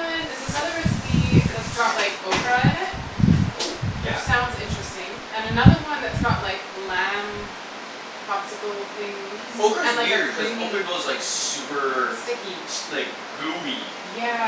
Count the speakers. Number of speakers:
2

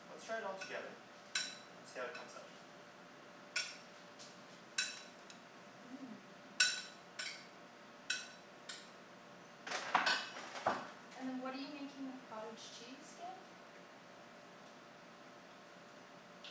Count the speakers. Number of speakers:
2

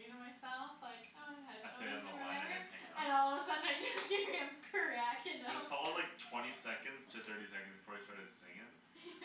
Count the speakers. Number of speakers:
2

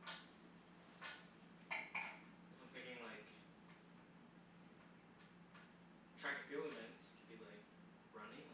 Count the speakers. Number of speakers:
1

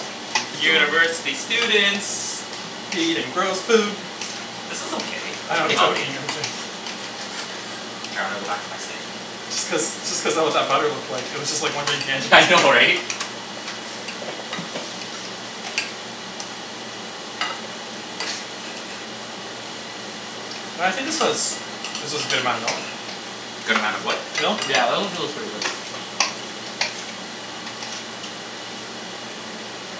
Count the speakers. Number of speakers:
3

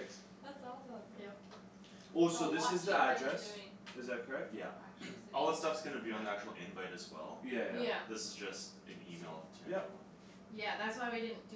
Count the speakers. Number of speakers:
4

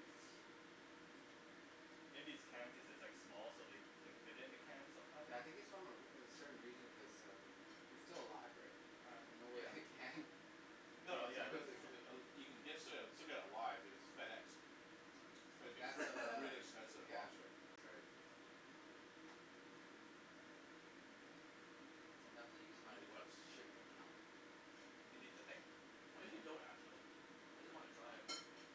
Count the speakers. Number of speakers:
4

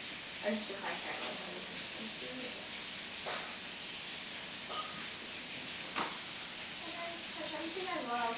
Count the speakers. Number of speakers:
1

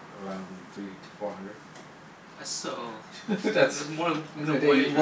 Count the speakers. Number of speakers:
2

